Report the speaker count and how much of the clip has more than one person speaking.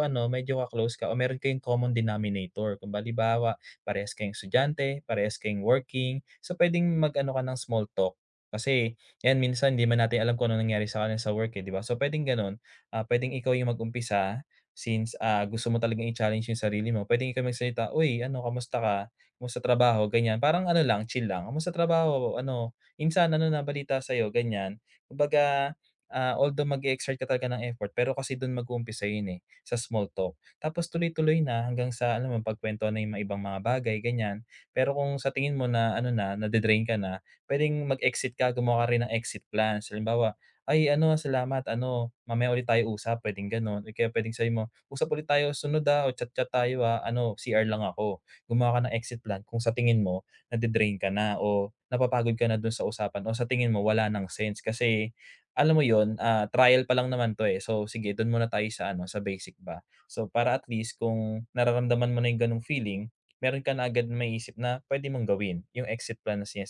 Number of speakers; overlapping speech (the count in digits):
1, no overlap